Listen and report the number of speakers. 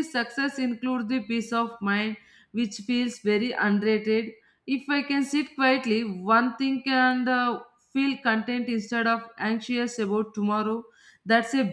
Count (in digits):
1